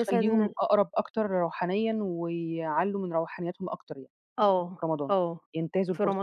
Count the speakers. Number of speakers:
two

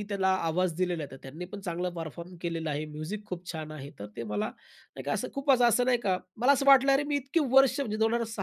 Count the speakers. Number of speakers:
one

